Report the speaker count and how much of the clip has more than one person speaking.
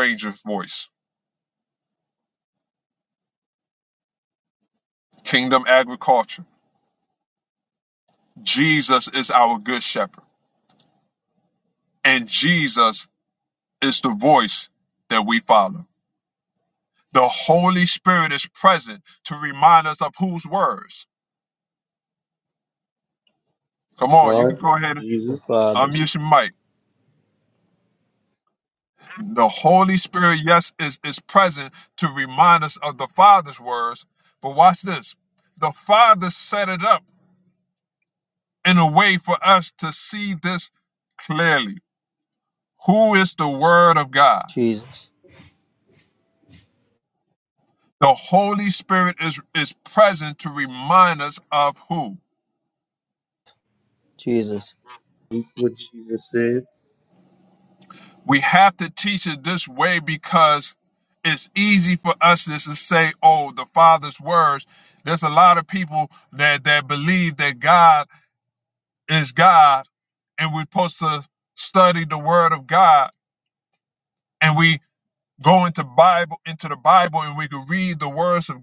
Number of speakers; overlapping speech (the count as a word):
three, about 1%